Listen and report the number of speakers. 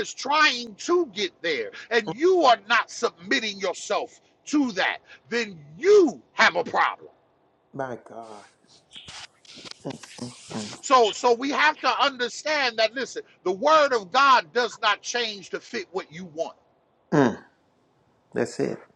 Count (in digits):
2